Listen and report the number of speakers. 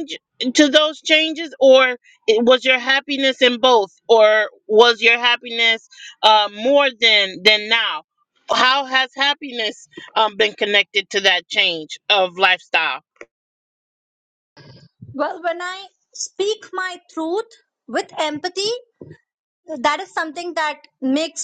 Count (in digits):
2